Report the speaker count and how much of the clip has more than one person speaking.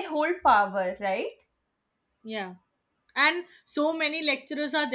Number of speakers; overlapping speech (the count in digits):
2, no overlap